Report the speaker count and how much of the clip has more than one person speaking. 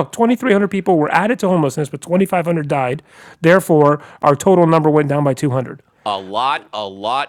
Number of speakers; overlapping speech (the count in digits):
2, no overlap